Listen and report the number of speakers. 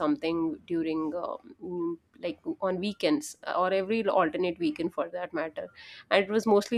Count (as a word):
one